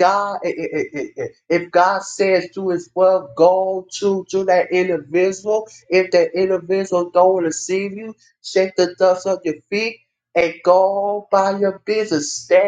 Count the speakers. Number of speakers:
one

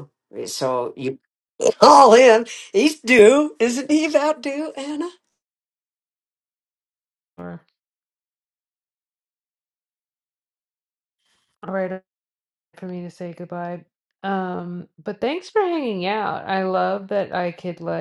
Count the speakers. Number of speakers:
two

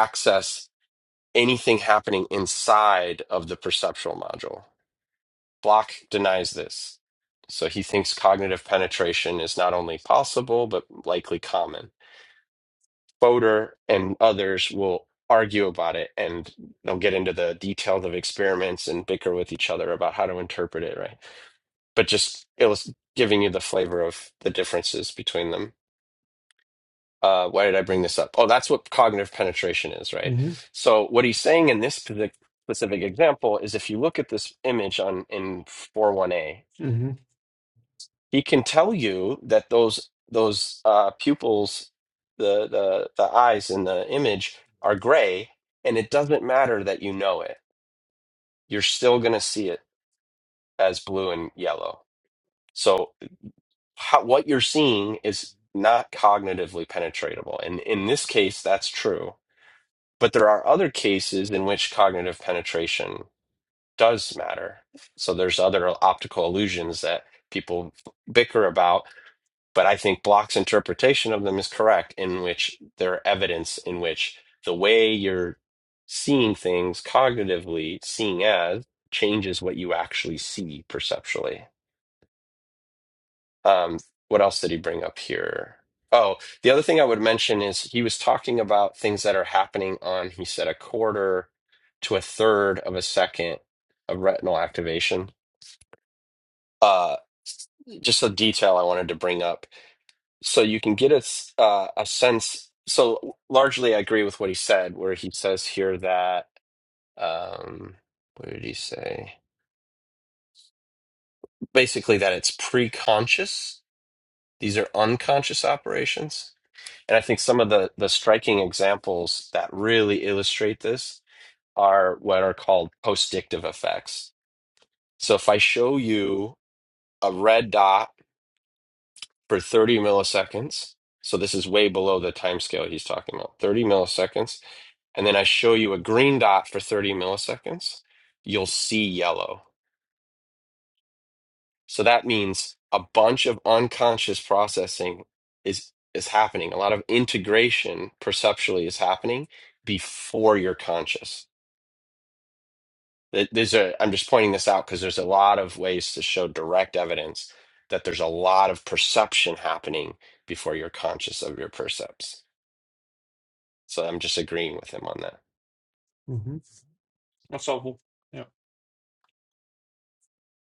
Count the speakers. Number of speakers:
two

